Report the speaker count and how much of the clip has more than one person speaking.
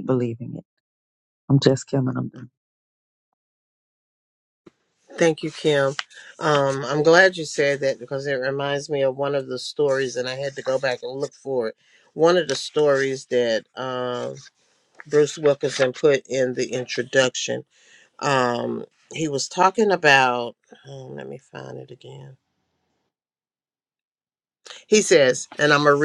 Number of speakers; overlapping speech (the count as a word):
two, no overlap